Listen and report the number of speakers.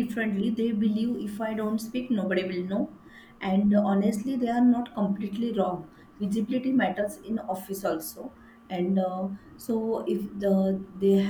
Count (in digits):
1